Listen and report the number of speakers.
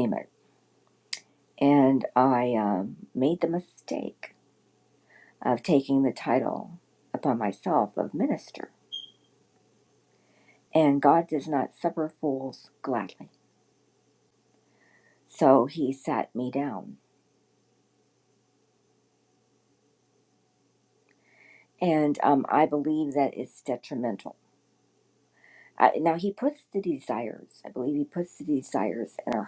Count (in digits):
1